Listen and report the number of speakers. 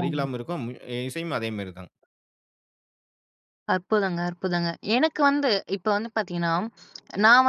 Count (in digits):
2